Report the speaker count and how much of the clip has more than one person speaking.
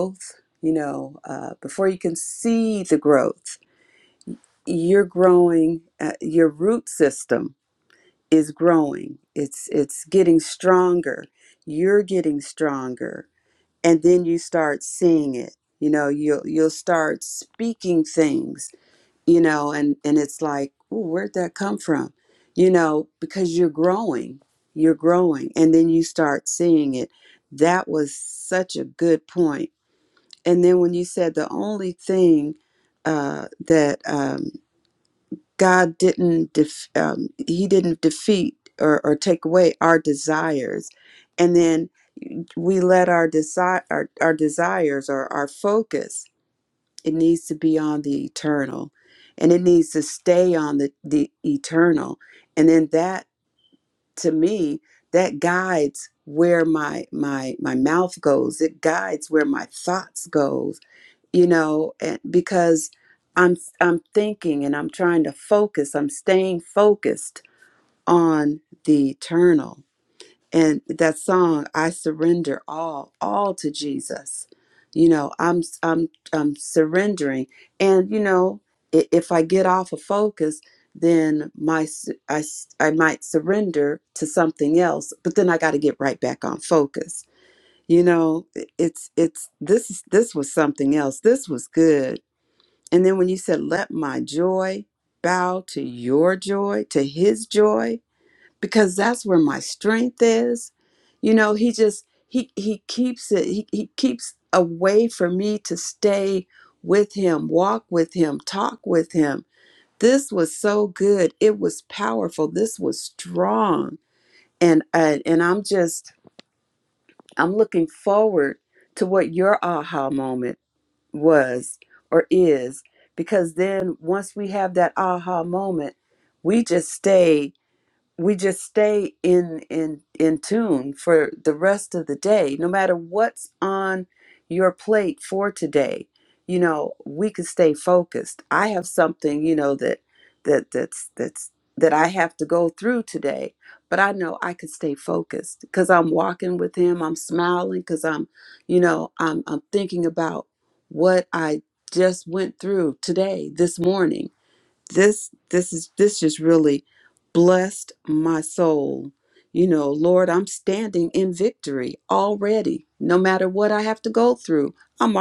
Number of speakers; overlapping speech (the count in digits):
1, no overlap